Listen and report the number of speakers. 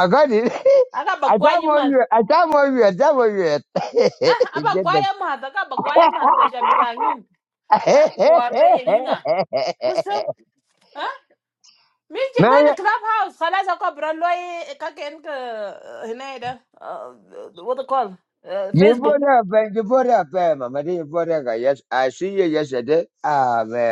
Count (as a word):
two